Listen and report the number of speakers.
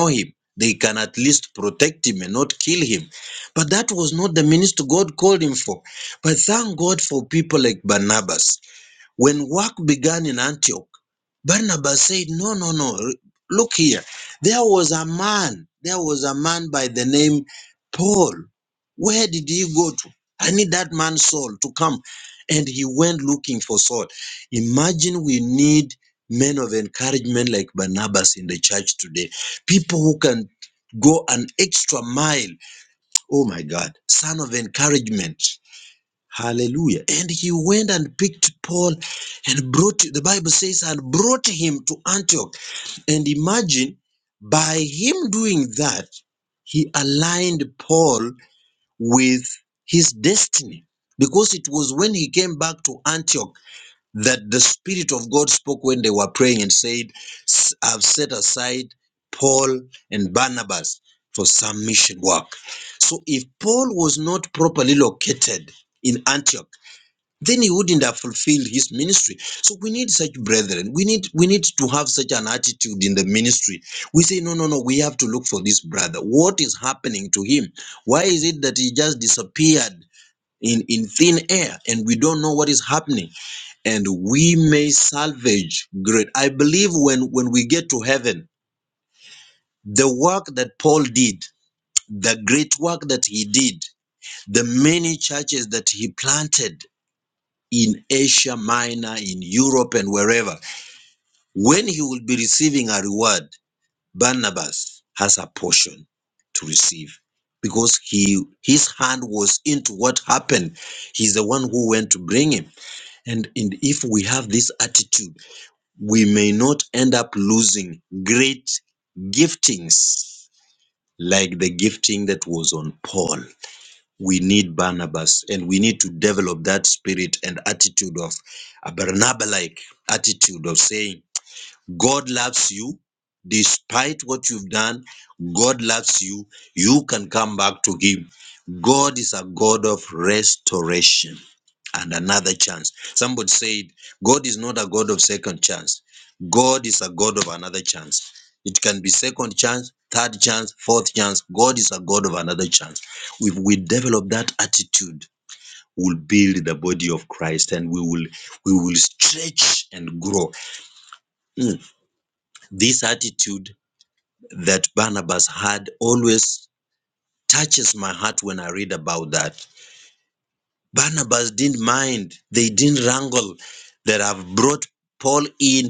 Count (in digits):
1